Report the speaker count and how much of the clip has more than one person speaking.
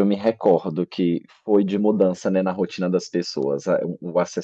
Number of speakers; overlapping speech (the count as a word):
one, no overlap